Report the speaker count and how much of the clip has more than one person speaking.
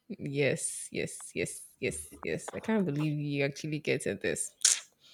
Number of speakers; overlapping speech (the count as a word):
one, no overlap